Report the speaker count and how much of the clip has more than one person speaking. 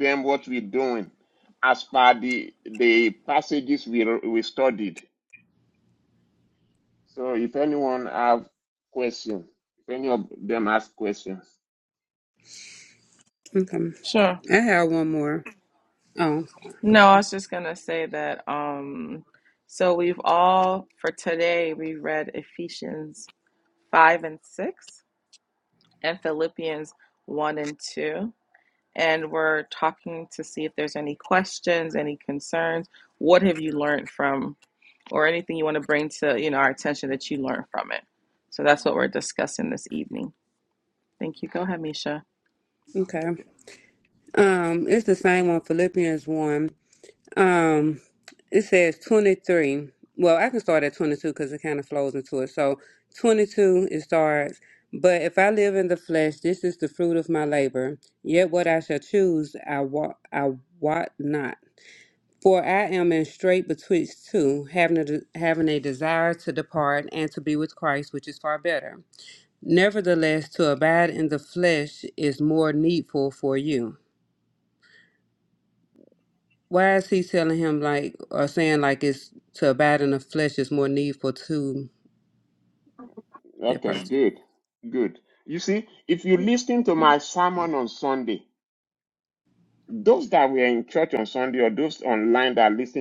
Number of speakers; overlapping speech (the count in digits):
3, under 1%